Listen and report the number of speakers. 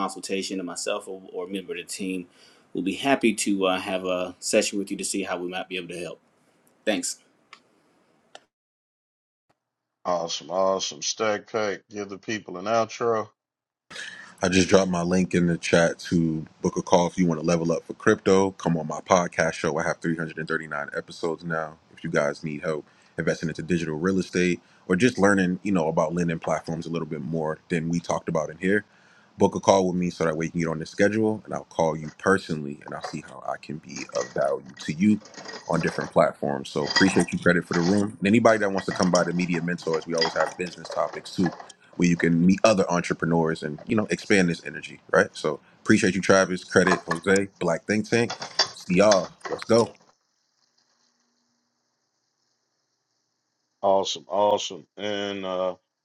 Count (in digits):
3